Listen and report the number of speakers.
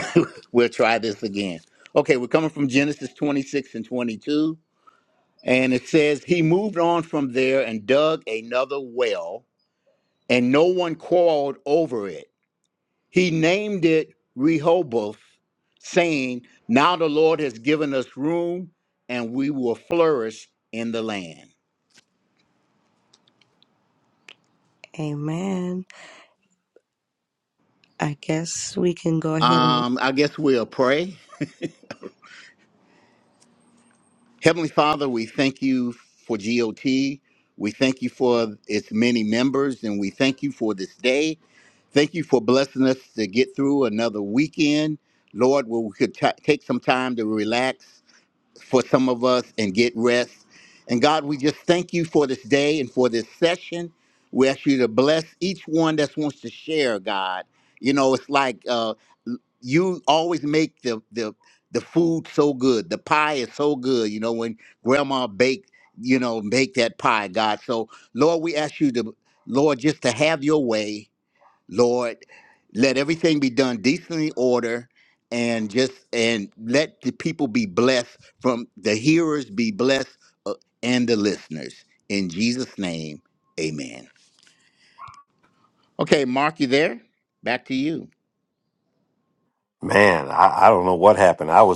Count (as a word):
three